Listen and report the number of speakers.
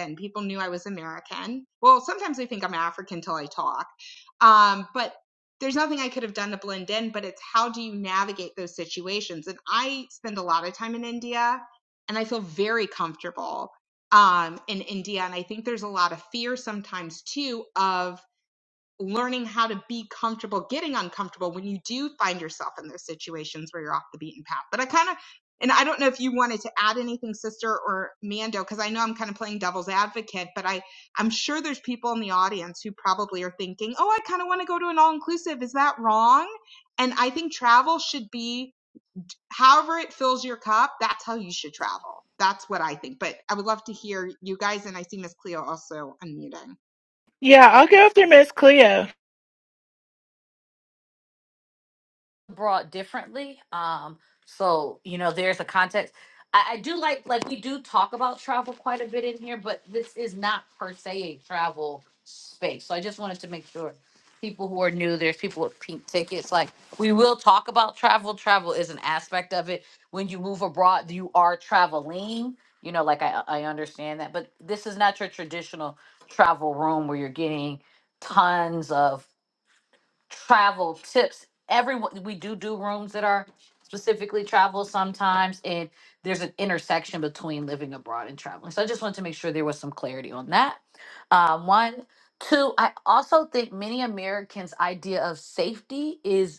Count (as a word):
three